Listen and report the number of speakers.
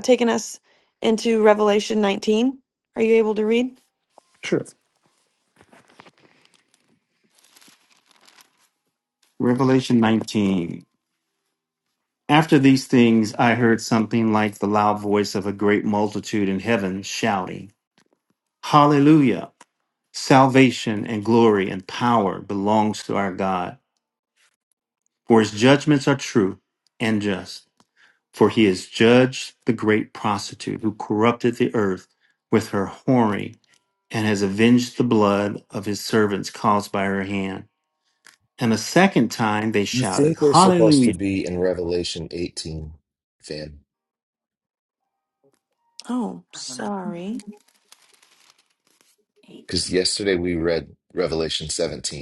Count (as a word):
three